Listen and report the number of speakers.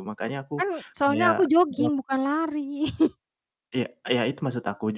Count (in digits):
2